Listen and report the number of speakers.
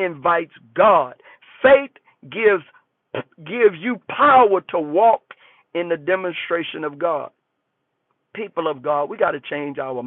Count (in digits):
1